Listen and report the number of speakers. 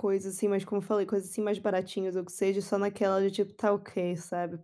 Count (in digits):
1